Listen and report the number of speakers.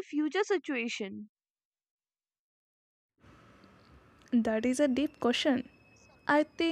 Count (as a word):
two